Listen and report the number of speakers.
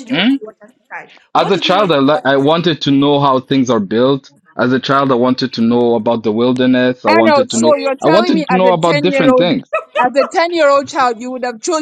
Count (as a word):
three